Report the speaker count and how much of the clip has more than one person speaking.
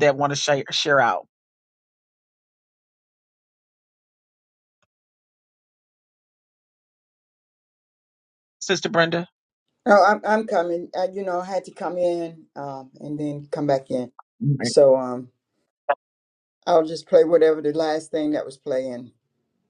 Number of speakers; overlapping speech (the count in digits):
2, about 1%